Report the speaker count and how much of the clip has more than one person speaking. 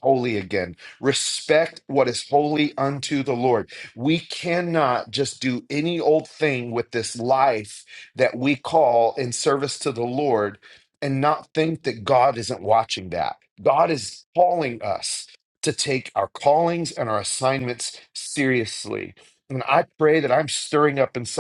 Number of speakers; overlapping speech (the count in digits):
1, no overlap